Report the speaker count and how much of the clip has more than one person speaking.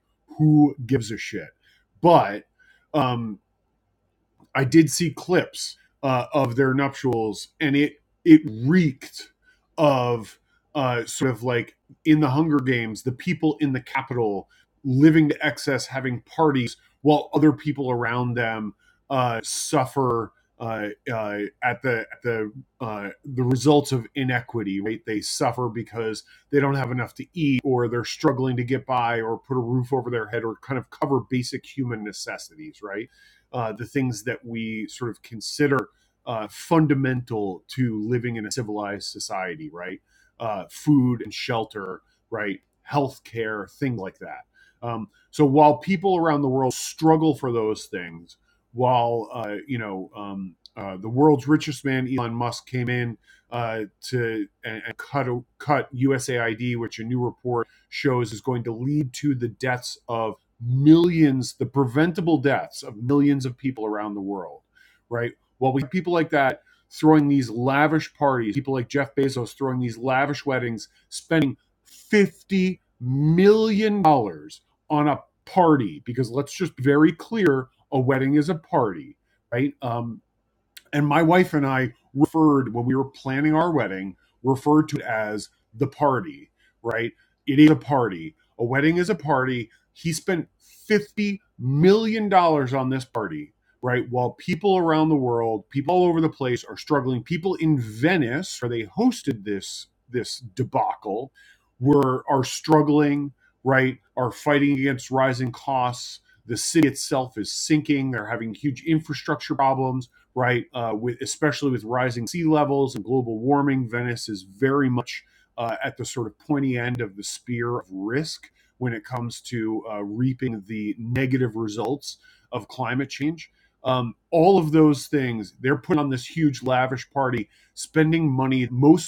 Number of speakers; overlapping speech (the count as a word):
one, no overlap